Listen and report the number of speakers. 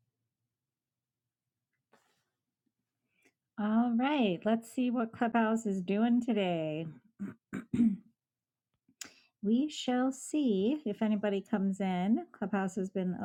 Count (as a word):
one